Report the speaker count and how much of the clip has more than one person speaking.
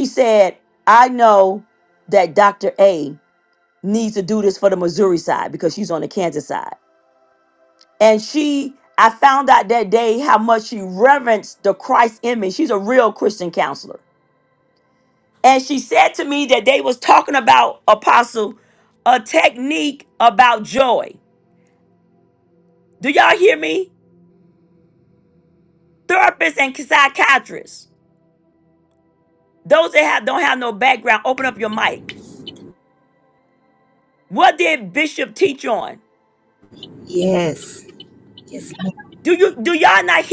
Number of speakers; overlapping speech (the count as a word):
two, no overlap